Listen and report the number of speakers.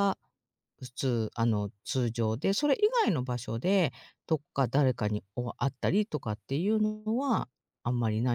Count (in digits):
1